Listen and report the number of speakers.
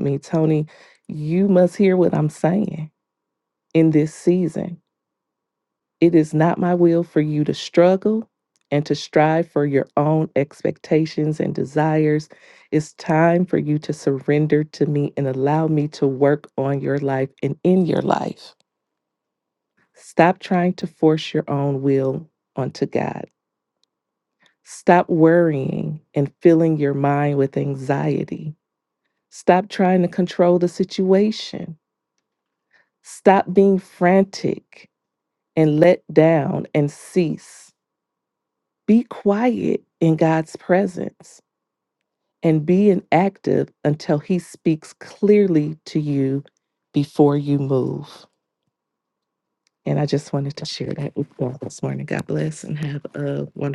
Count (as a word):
one